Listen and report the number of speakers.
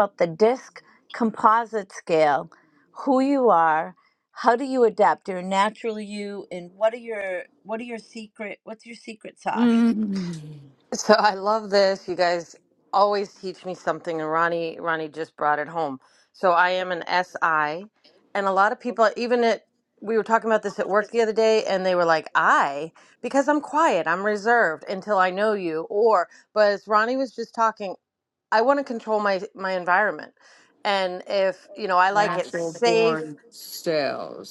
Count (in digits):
3